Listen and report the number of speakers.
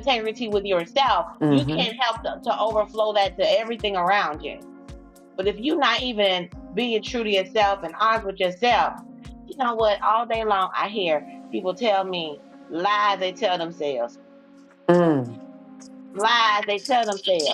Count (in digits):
2